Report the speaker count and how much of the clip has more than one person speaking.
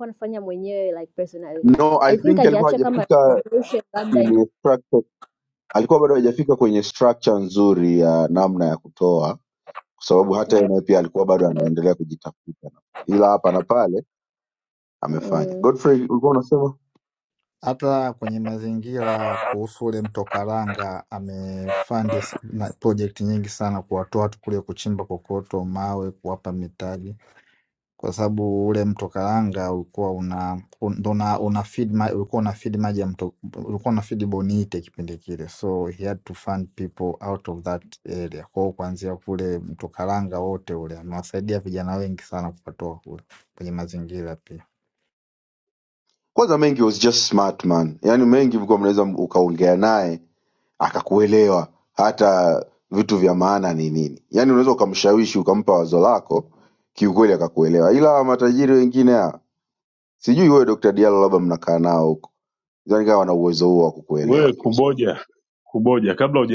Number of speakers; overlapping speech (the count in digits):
4, about 4%